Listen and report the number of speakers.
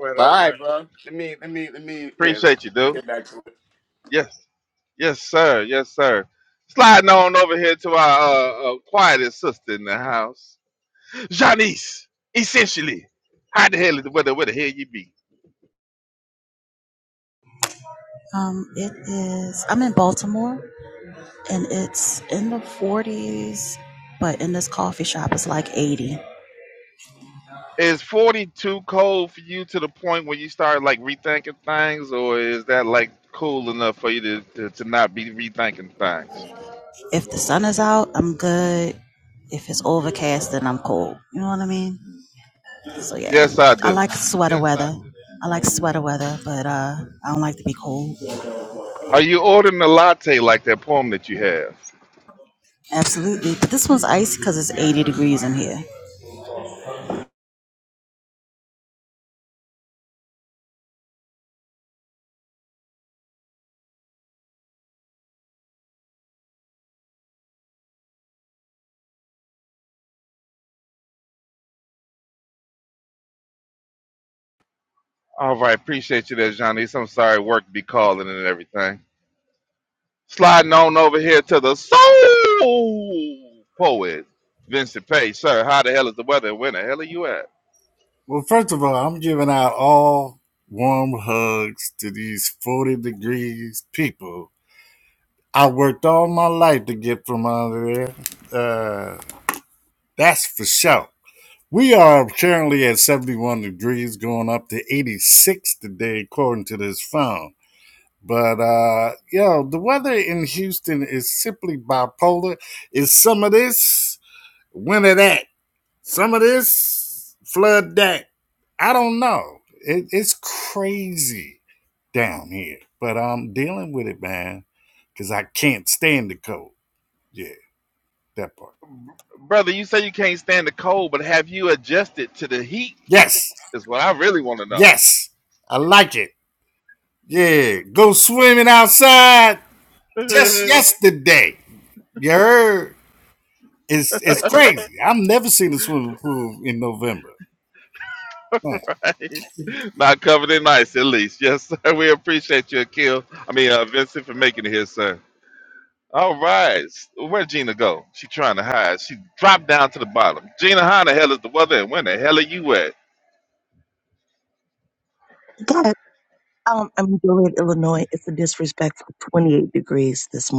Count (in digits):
5